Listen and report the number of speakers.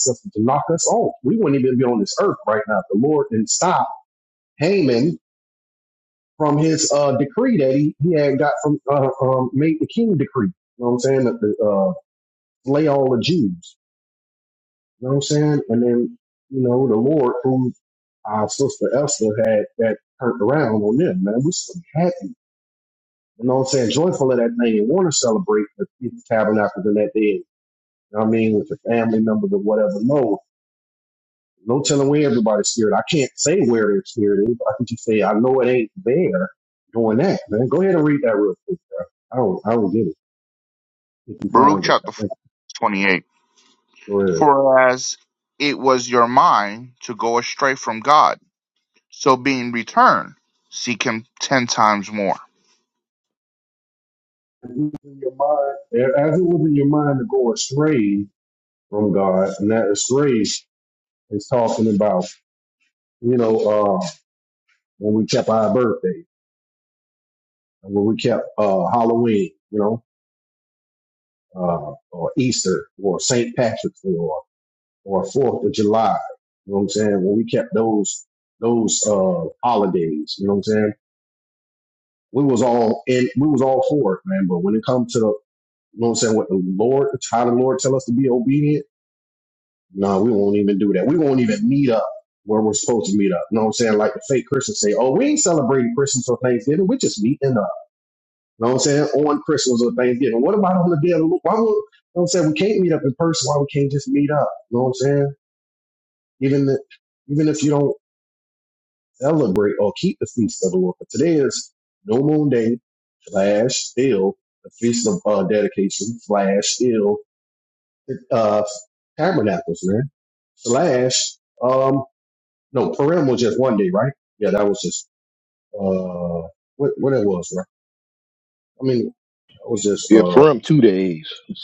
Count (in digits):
3